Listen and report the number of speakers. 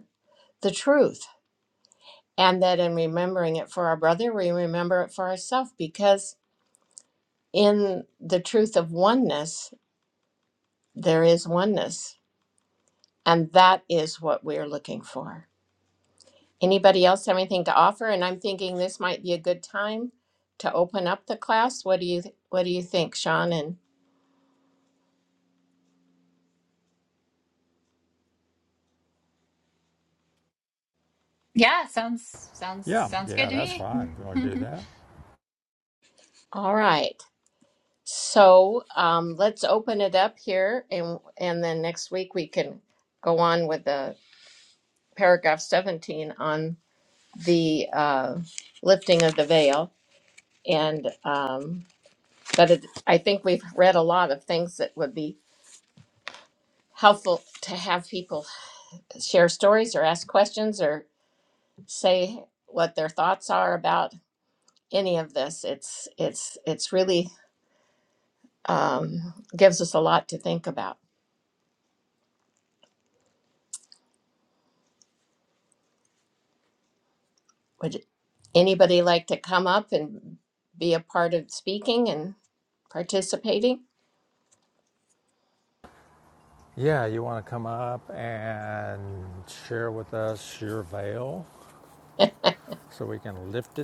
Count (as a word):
three